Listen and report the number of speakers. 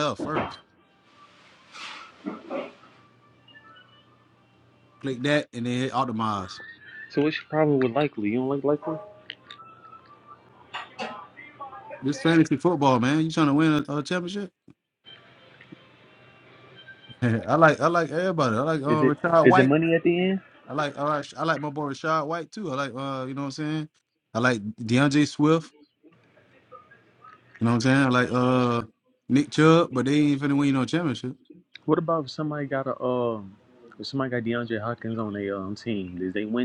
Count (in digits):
2